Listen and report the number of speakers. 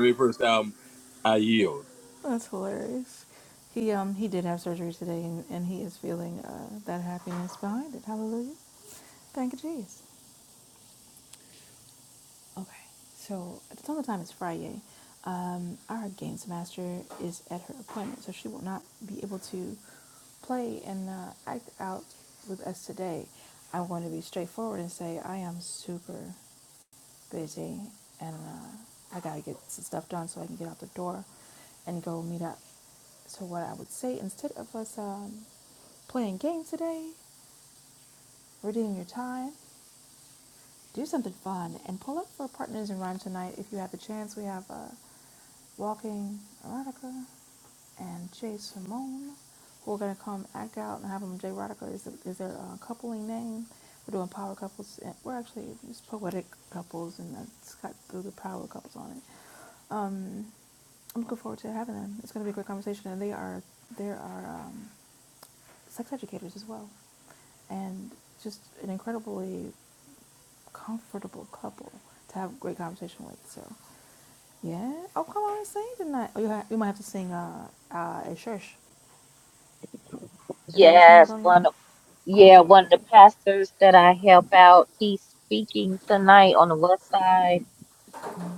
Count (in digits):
3